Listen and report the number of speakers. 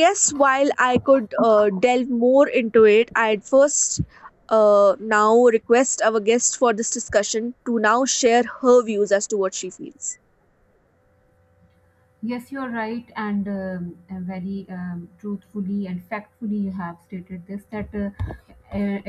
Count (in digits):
2